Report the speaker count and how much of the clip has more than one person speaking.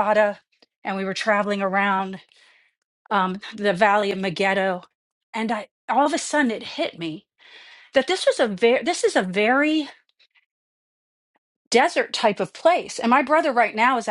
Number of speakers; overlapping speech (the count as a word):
one, no overlap